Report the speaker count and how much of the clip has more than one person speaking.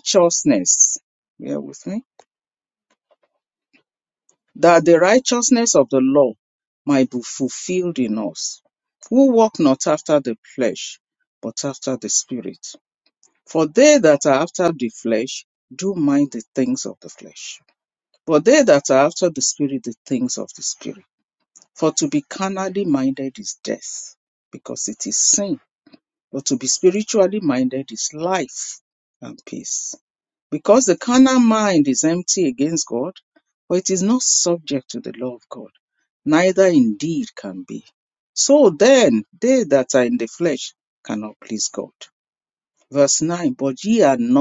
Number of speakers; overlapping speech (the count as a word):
one, no overlap